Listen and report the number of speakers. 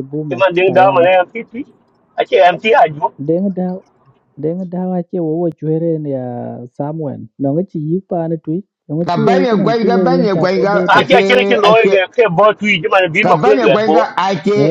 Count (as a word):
three